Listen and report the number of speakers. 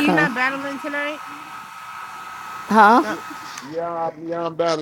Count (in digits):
3